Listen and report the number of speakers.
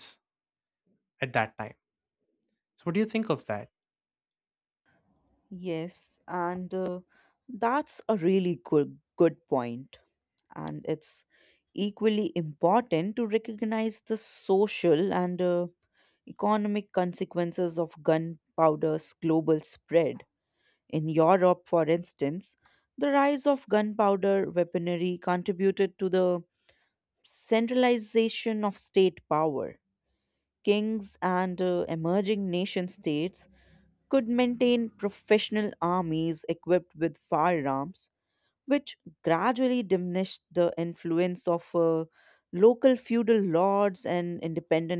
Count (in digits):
2